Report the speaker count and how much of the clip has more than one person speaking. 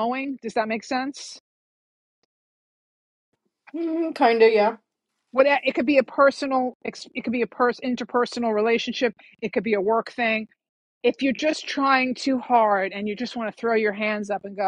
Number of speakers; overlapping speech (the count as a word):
two, no overlap